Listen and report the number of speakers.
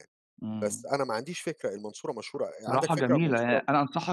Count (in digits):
2